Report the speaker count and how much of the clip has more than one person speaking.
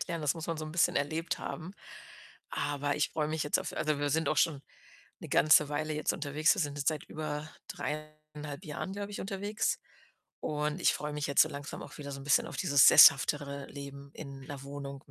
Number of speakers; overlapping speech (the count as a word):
one, no overlap